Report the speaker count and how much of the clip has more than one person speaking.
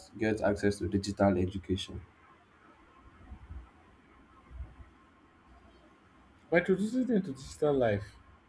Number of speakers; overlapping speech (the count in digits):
2, no overlap